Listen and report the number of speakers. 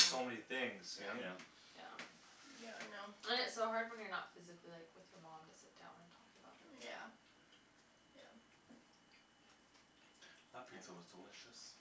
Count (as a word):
four